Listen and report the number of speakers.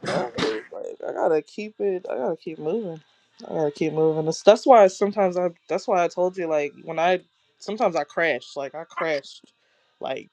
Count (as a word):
one